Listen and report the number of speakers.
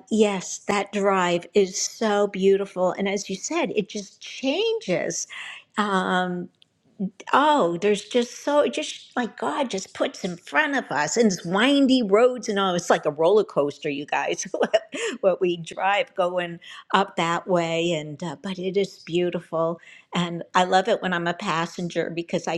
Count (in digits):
1